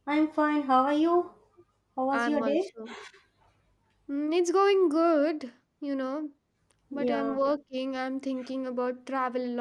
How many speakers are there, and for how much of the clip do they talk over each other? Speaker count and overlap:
2, about 11%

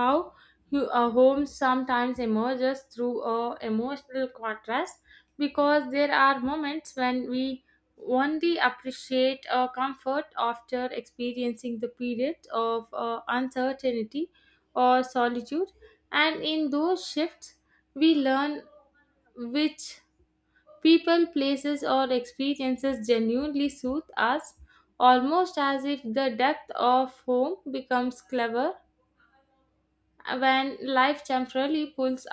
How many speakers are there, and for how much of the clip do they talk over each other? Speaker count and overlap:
1, no overlap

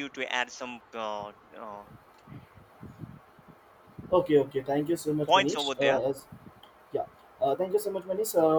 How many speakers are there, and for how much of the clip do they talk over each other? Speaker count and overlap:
2, about 8%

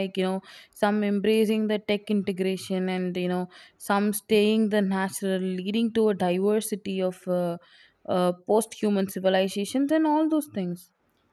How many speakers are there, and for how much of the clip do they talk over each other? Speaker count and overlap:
1, no overlap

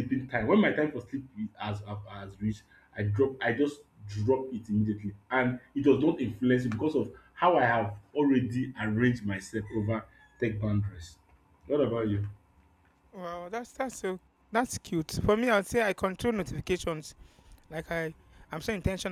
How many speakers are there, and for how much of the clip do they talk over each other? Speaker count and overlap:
2, no overlap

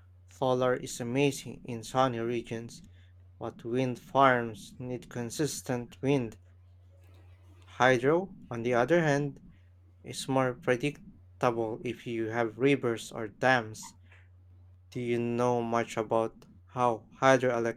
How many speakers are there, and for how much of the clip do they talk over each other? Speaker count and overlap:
1, no overlap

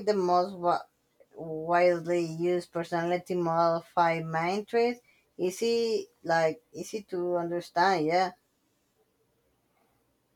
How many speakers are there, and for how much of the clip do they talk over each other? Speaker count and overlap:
1, no overlap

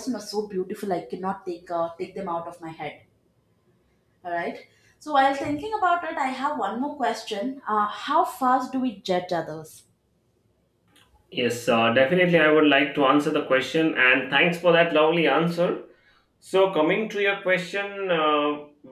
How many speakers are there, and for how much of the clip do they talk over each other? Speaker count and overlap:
2, no overlap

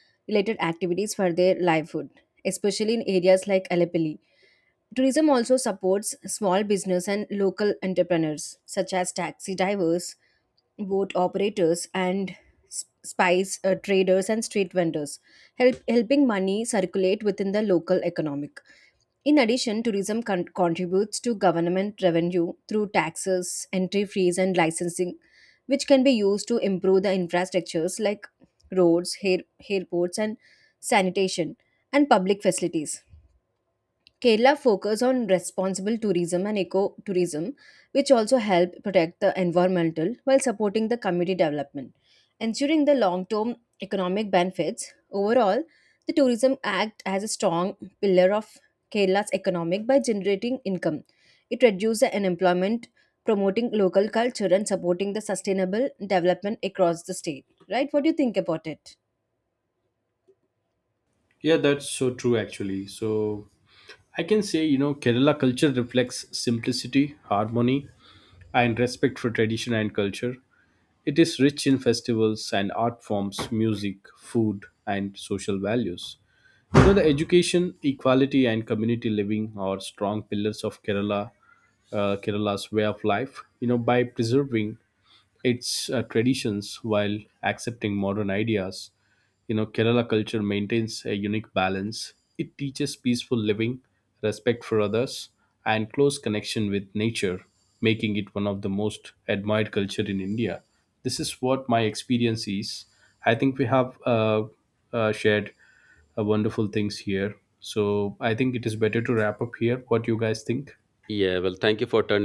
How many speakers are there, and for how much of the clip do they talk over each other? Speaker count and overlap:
3, no overlap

